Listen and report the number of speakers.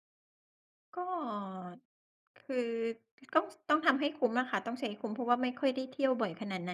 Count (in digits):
1